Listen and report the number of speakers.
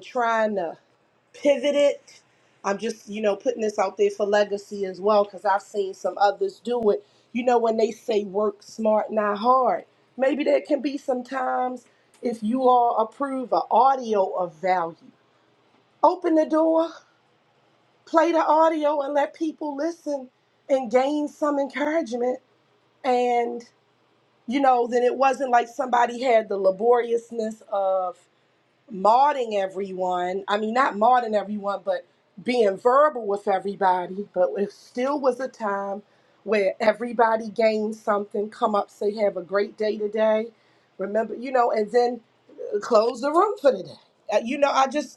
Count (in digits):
1